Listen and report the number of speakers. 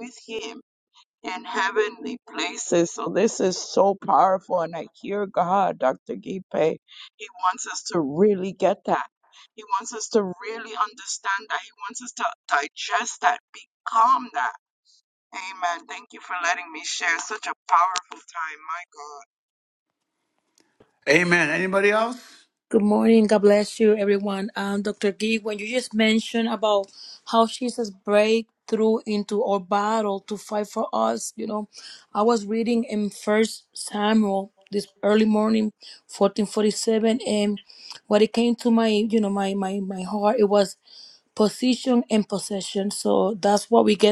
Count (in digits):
3